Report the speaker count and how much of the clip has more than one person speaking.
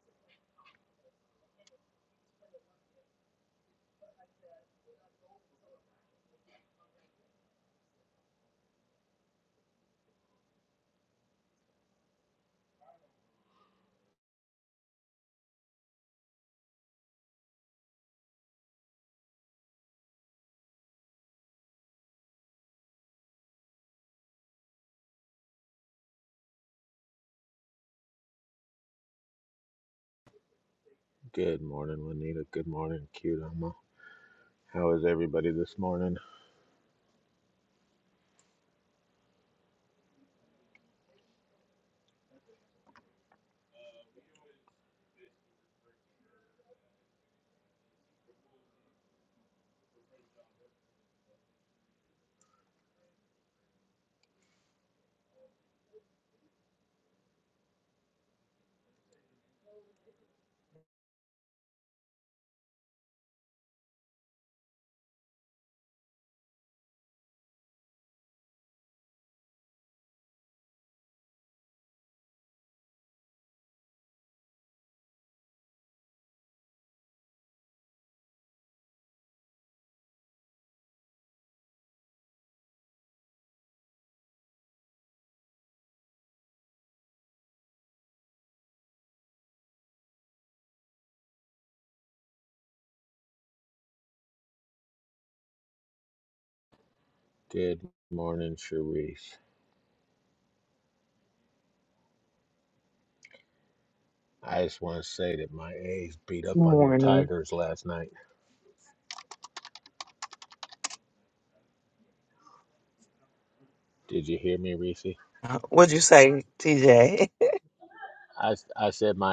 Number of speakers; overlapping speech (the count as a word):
two, about 1%